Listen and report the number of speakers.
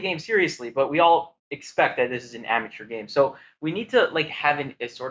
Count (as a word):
one